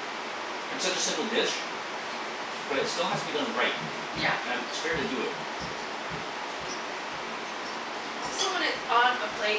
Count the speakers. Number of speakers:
two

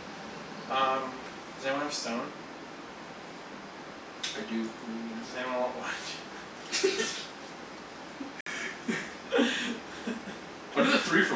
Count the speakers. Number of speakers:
two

